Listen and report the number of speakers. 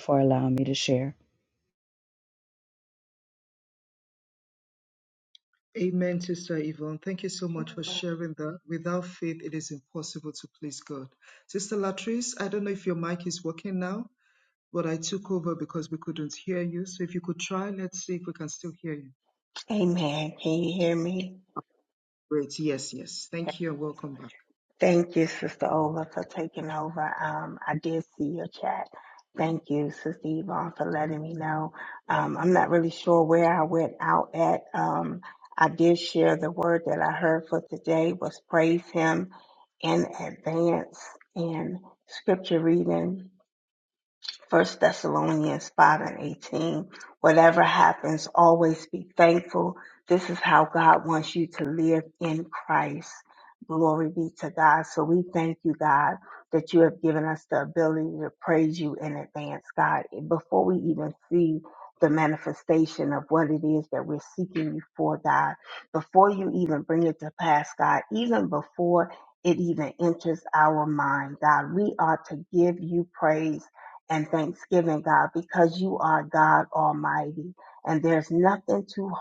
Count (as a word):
three